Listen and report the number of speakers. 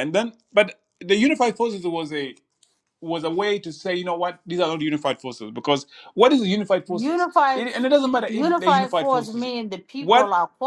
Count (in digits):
2